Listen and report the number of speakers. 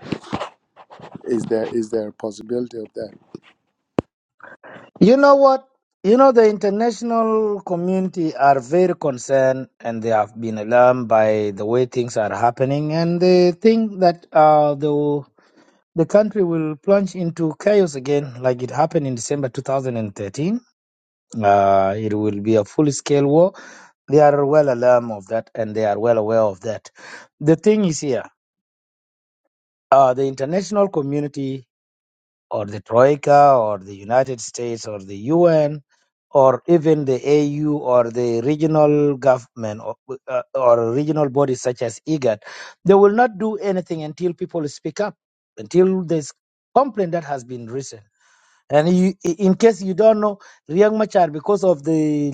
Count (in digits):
2